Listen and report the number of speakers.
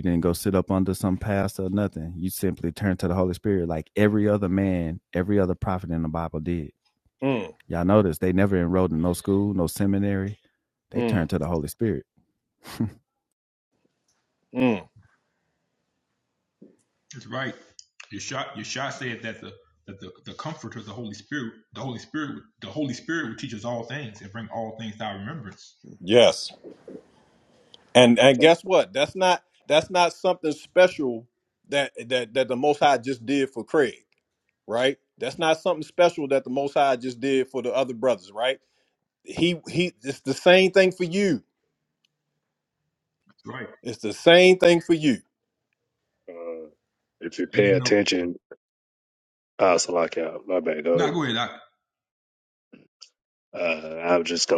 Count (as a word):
four